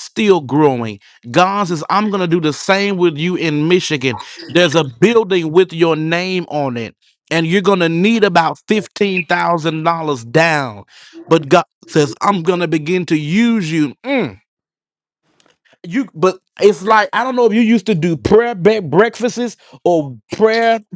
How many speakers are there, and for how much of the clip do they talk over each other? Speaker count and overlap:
1, no overlap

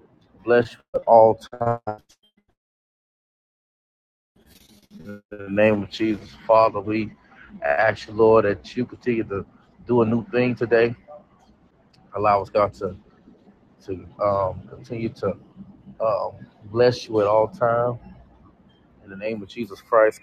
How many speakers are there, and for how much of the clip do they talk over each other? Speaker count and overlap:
1, no overlap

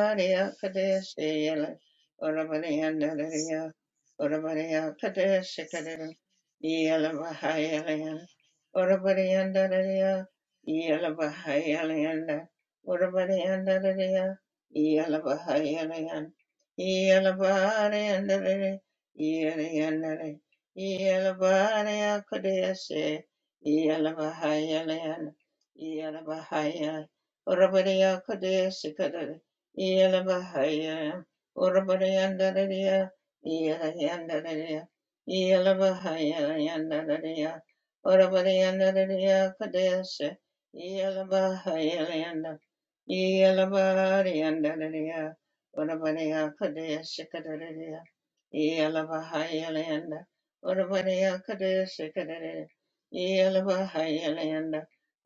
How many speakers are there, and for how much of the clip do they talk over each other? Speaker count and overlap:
1, no overlap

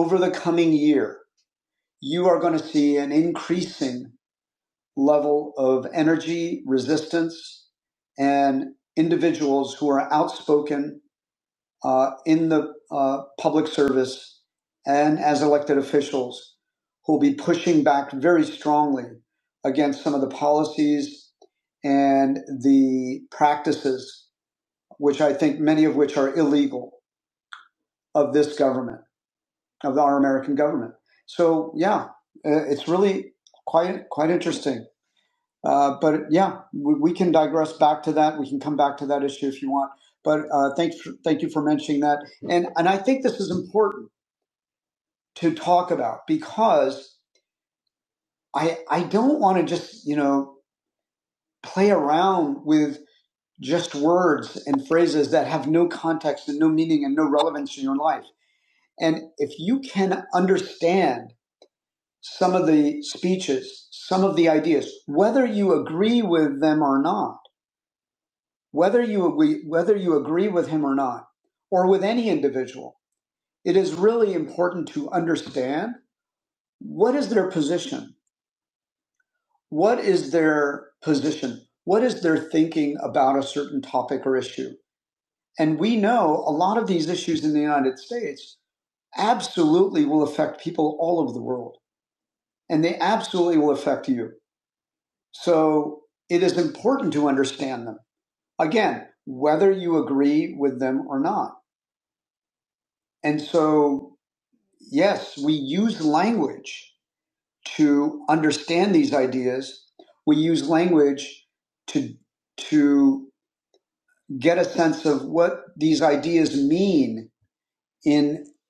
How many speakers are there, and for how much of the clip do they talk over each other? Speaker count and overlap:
1, no overlap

